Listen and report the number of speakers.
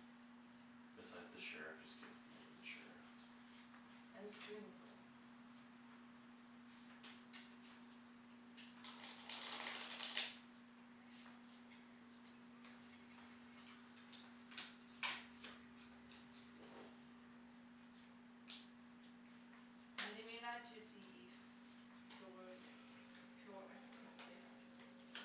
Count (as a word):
two